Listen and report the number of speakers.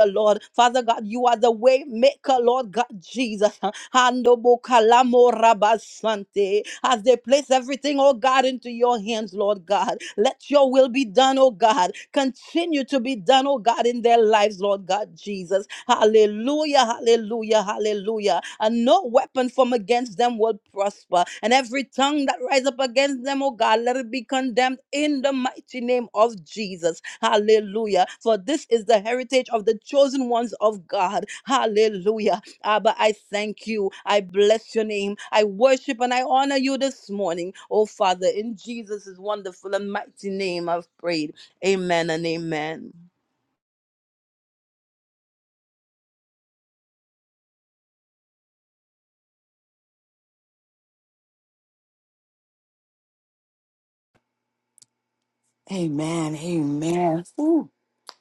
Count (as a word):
two